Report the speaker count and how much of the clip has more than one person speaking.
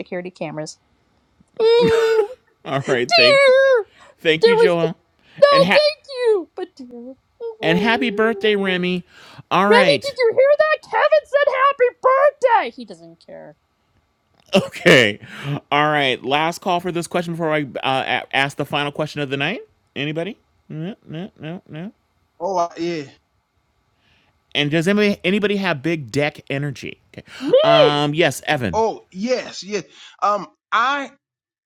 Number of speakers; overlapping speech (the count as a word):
three, about 10%